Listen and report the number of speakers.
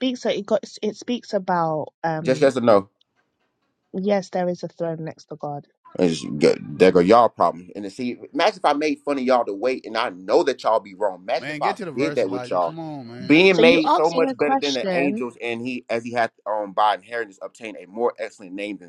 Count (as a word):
three